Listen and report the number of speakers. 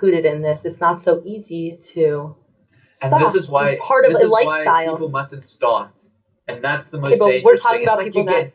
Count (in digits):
2